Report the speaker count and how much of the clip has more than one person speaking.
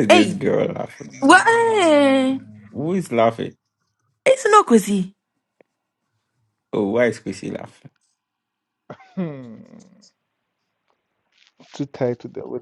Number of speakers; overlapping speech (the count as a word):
three, about 9%